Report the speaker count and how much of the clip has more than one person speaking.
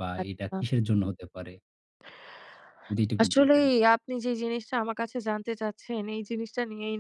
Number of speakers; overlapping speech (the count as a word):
two, about 14%